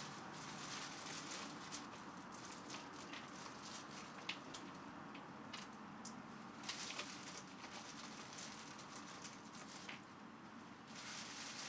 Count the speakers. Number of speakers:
0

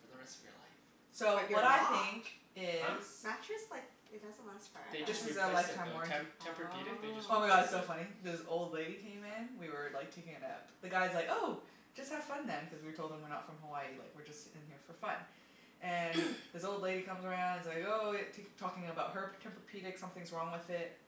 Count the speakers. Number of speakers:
3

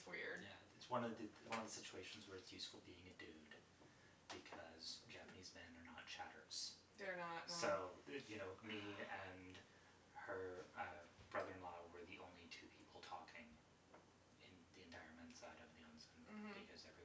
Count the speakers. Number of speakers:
2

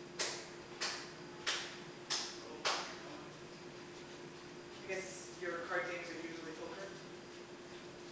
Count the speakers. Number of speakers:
1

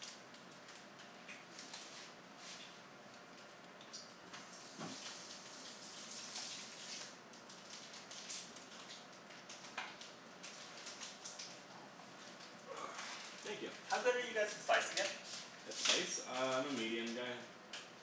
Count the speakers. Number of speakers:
2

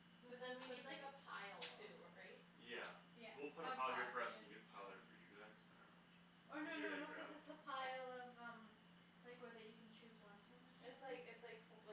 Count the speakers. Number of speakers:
3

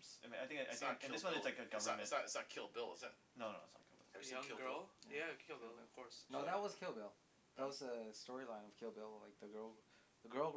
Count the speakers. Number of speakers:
4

